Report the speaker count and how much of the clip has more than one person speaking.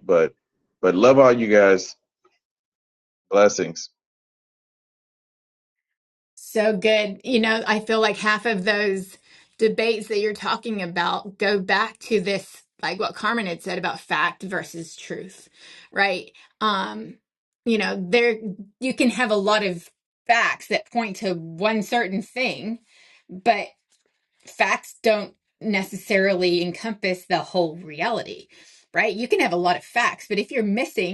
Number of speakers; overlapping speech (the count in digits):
2, no overlap